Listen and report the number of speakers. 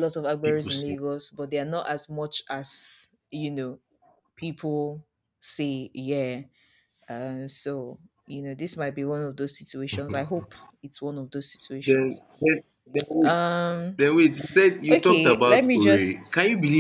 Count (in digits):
2